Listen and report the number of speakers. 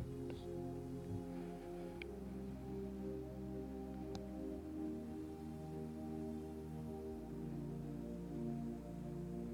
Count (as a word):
zero